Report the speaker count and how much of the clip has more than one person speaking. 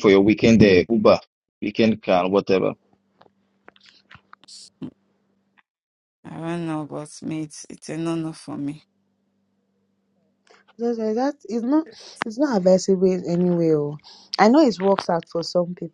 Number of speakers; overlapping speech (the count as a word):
three, no overlap